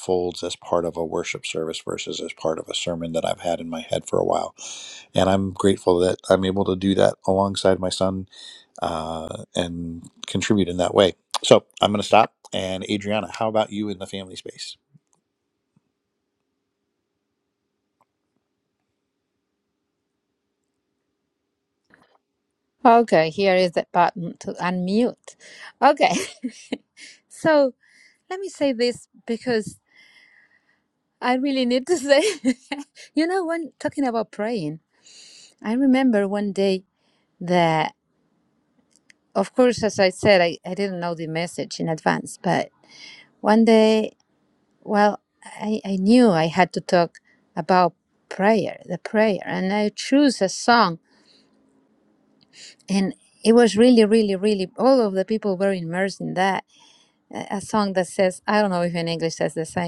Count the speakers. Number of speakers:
2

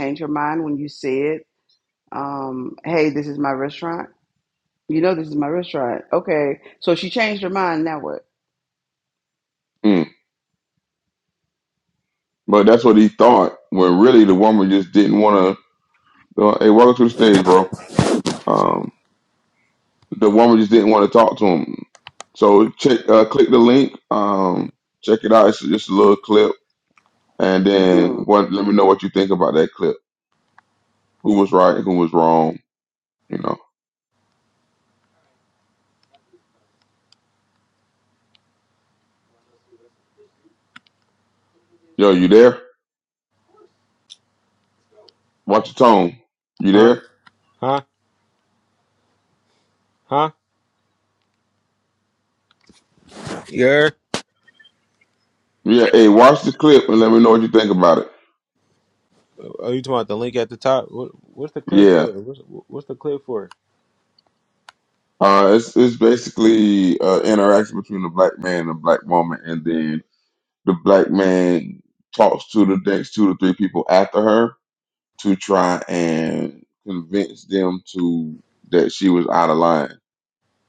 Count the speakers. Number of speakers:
3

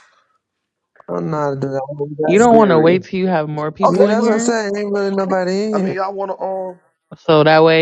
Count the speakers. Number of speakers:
3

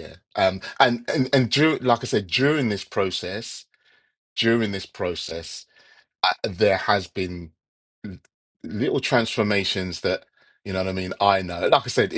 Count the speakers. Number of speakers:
1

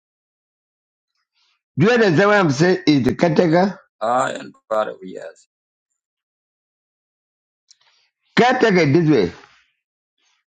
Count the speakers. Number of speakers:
2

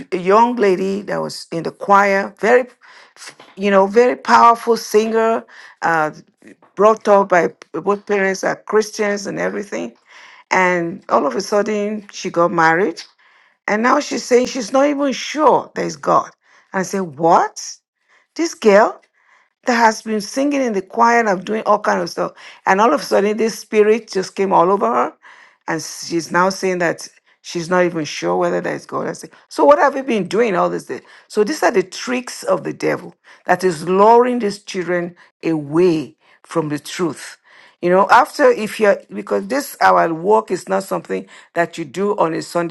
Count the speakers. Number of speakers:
1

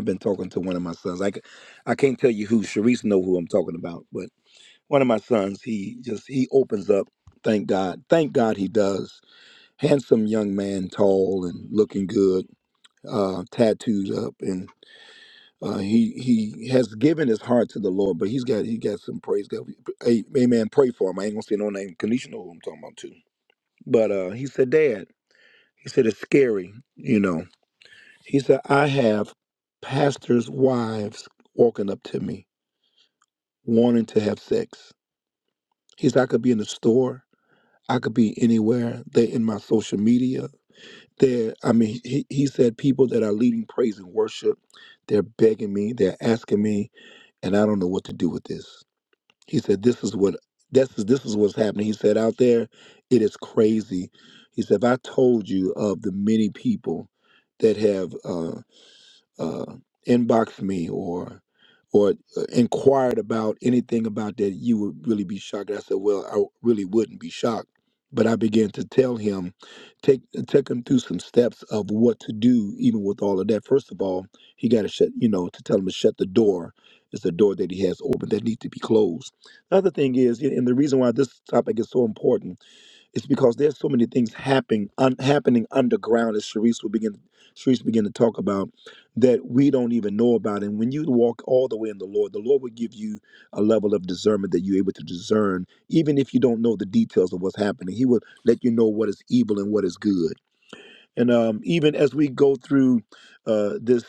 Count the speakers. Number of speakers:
1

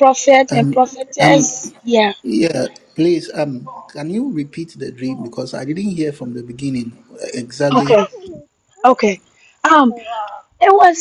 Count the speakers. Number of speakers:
2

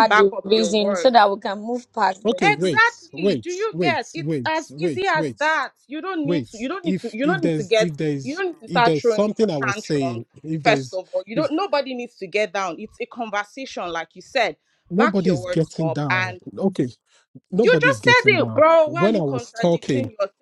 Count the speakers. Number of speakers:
3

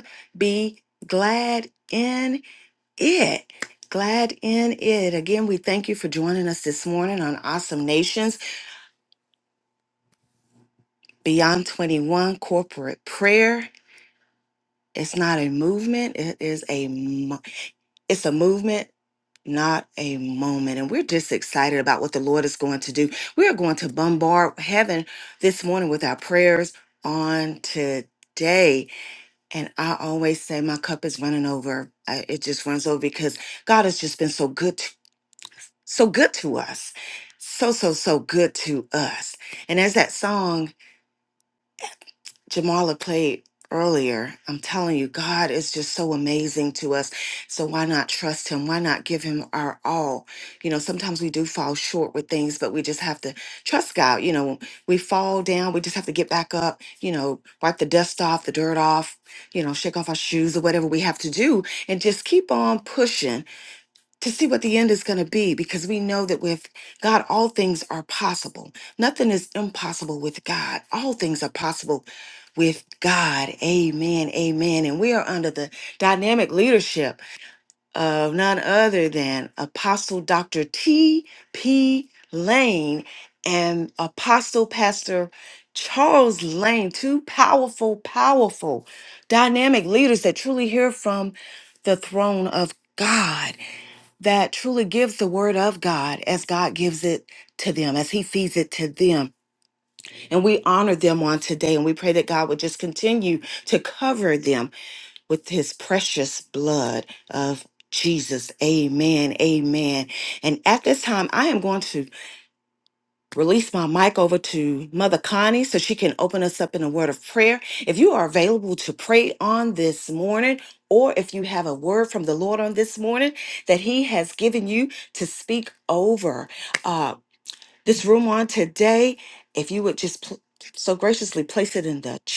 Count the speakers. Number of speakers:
1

